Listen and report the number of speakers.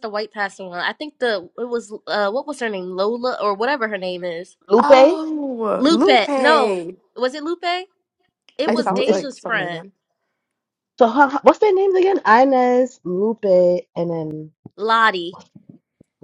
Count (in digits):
3